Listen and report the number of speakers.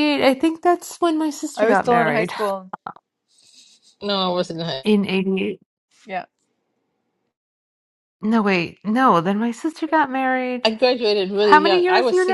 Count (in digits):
3